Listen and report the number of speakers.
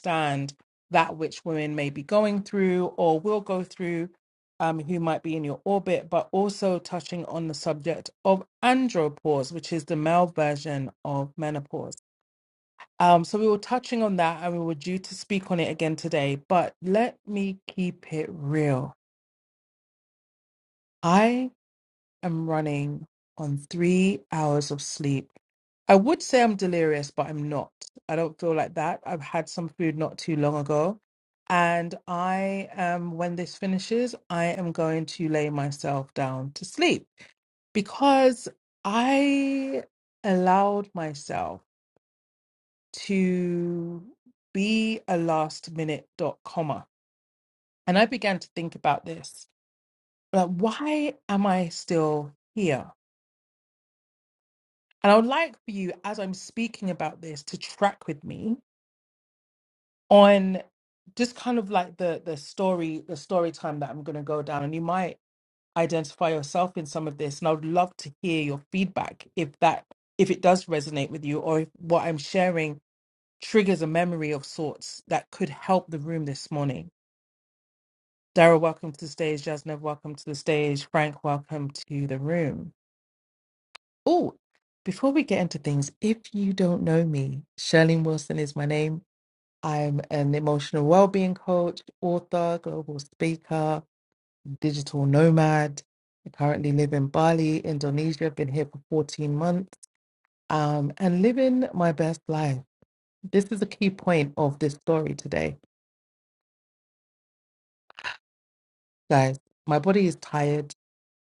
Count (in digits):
1